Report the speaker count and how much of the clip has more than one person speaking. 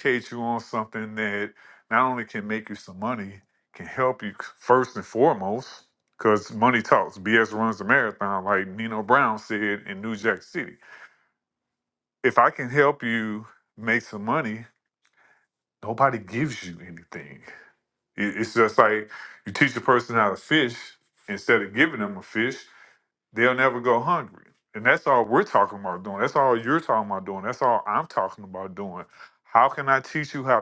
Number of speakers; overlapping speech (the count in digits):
1, no overlap